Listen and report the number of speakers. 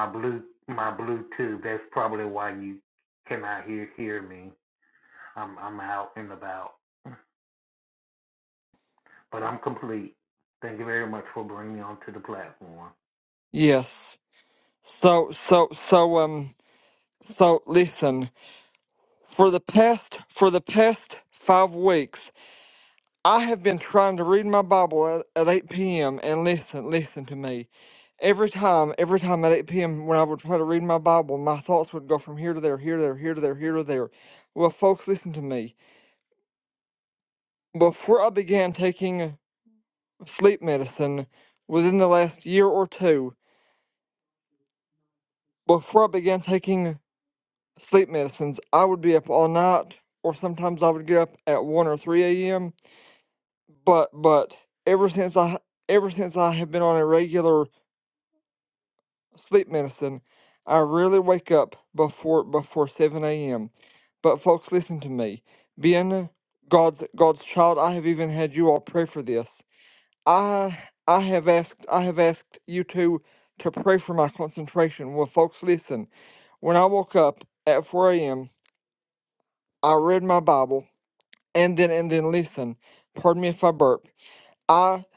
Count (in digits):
2